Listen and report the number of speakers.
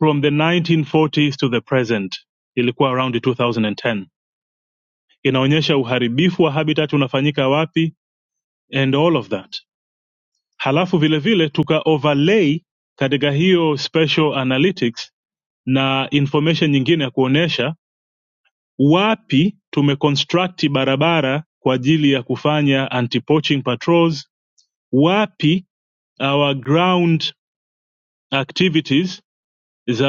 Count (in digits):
1